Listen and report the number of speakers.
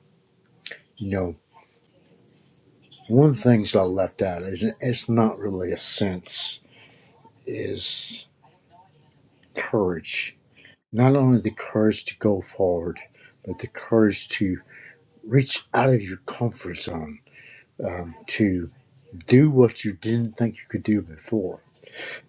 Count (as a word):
one